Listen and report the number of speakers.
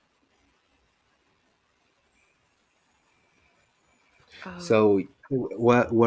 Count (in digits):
1